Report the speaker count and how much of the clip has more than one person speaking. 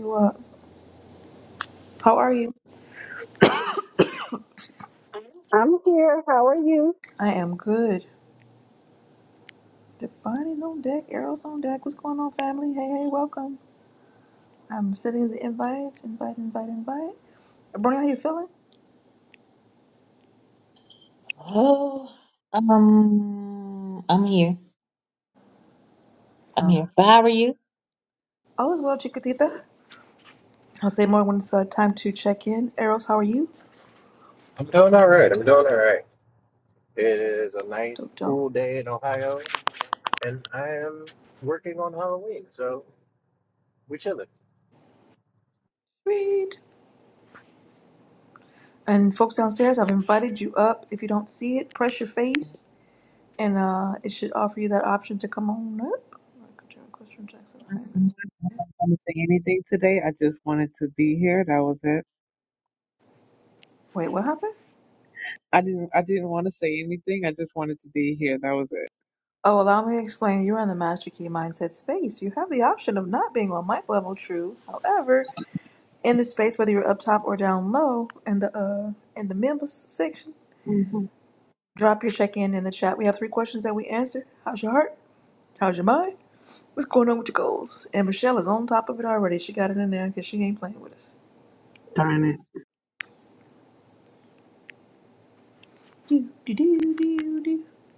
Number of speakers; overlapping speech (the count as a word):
five, about 1%